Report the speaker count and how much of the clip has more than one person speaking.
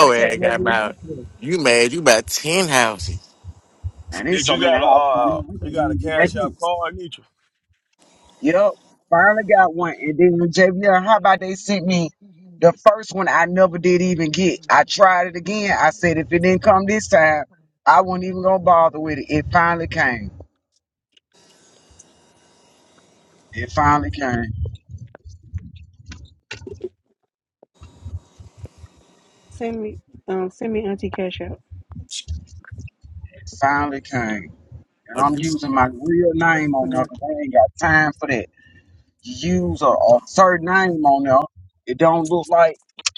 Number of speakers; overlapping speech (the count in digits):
4, about 8%